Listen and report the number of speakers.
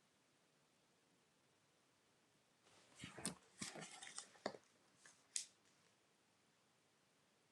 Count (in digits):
0